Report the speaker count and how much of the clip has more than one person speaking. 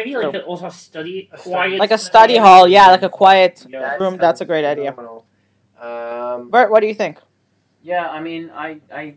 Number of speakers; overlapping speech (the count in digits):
4, about 40%